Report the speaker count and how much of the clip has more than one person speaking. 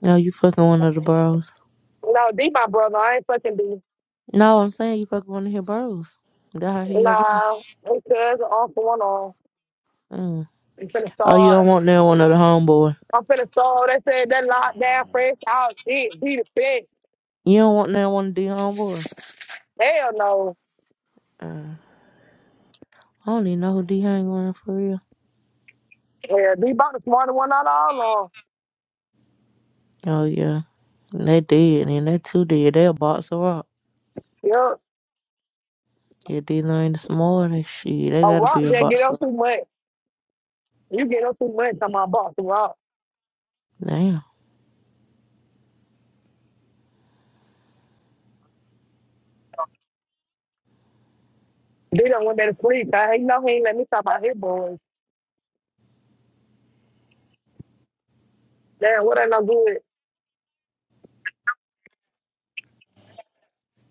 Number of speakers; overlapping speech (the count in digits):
2, about 3%